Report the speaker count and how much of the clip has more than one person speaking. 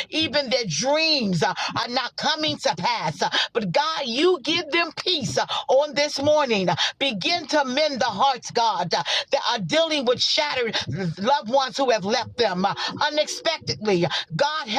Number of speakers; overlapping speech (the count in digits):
1, no overlap